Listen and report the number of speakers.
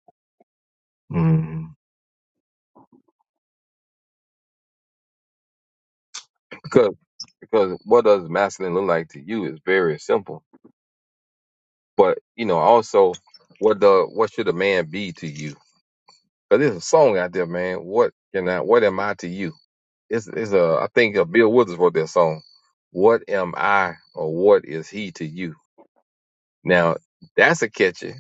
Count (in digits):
1